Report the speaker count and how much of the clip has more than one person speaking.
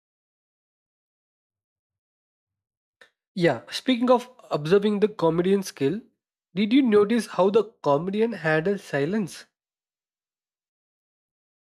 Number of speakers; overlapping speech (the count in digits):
1, no overlap